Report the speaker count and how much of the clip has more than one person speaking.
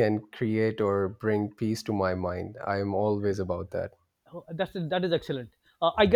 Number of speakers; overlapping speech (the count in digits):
2, no overlap